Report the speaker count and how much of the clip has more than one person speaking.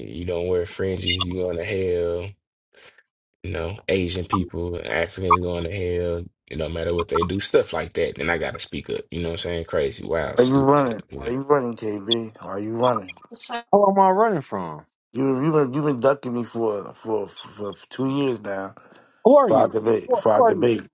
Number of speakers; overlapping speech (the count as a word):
three, about 9%